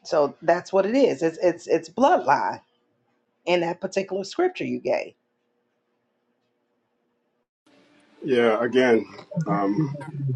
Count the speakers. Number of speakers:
2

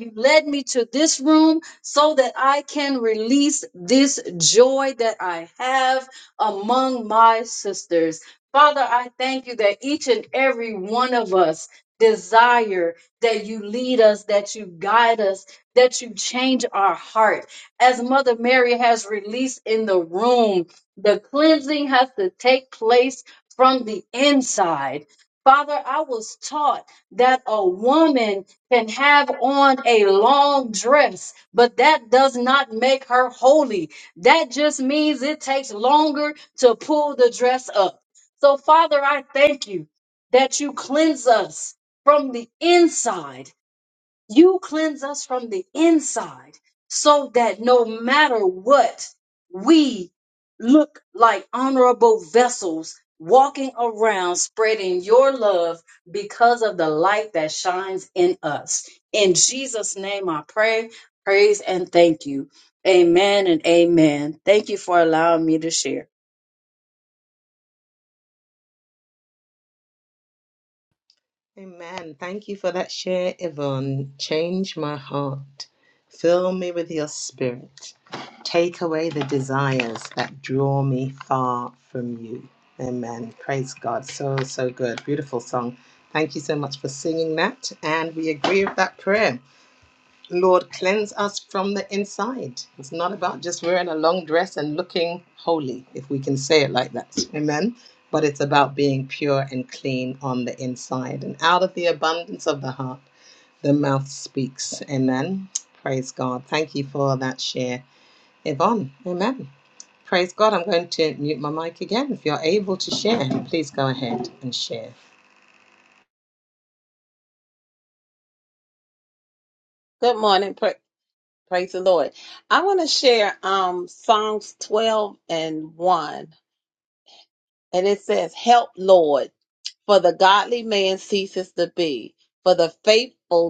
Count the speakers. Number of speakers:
3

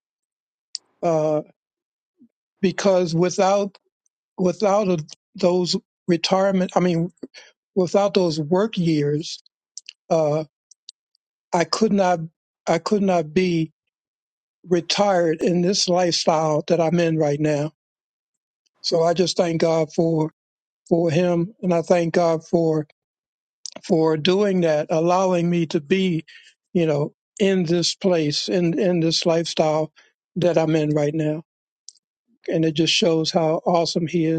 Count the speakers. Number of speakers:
1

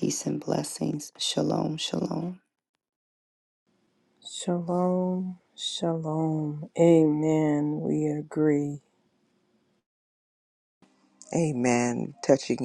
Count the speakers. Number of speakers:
3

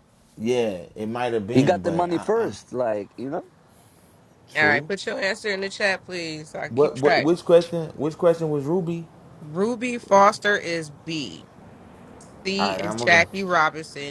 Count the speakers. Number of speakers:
3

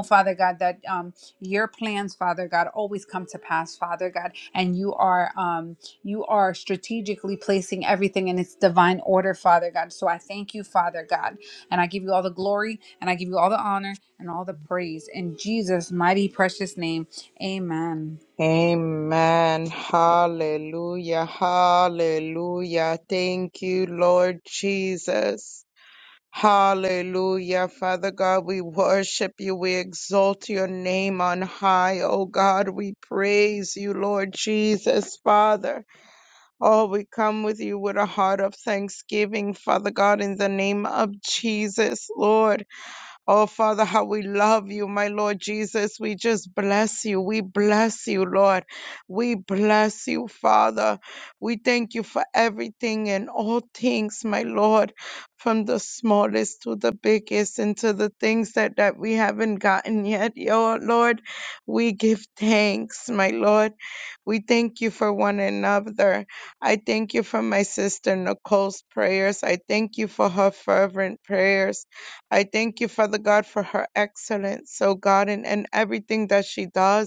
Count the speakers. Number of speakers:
2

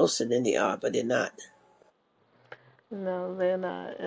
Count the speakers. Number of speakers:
2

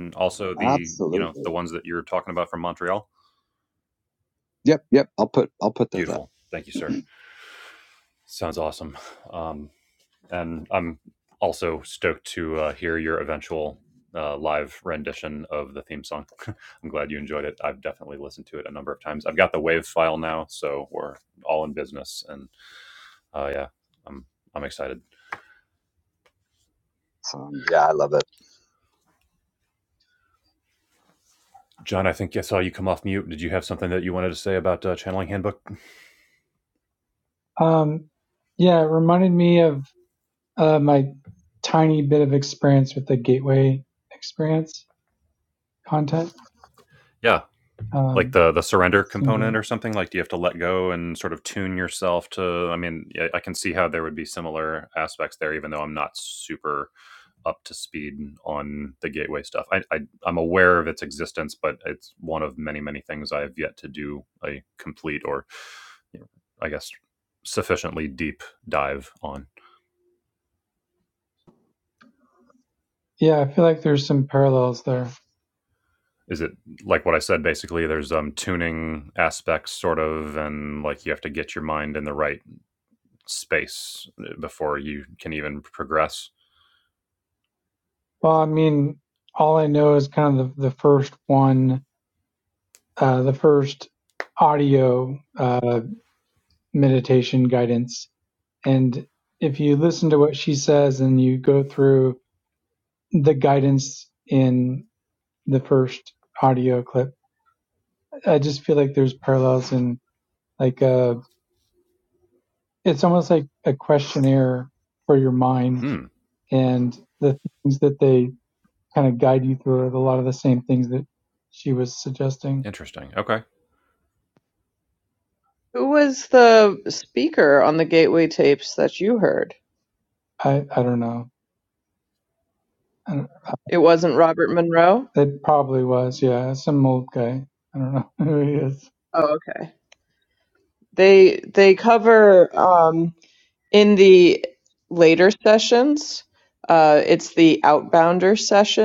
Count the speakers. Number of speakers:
4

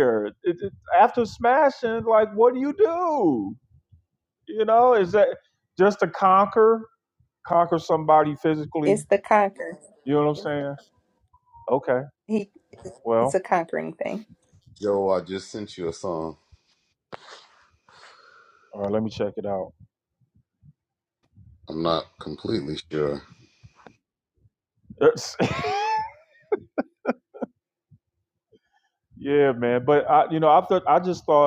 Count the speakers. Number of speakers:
3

